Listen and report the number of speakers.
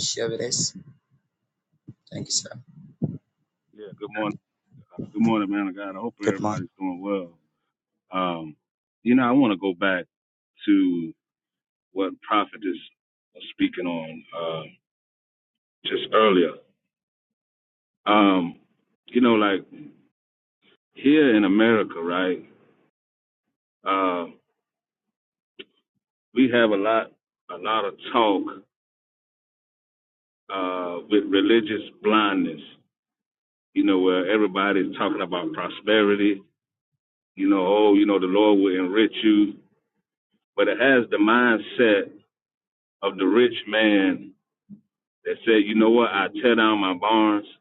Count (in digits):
2